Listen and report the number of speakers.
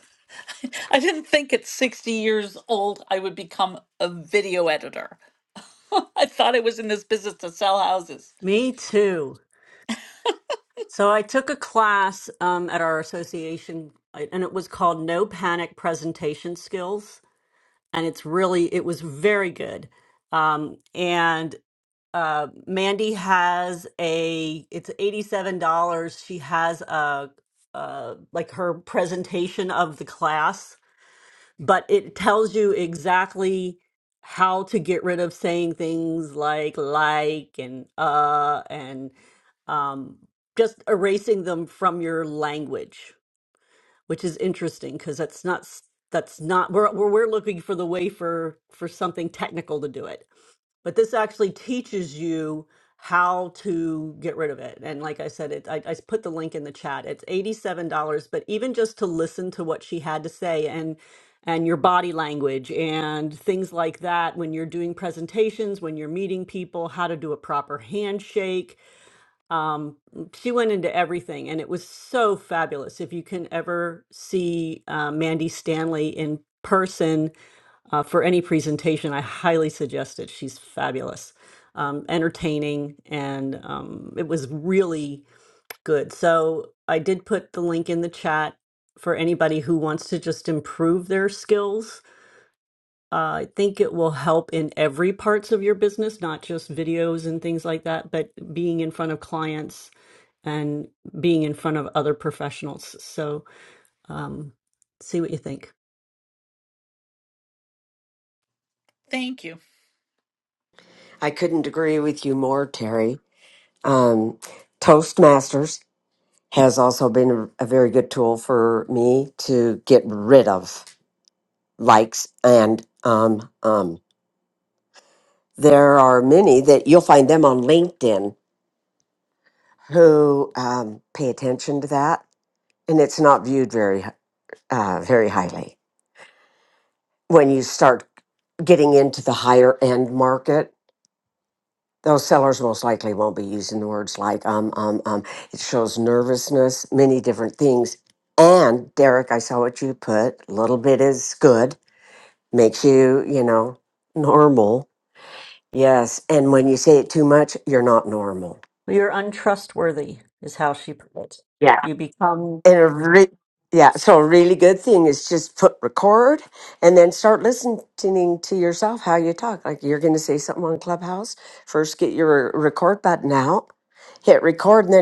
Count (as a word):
three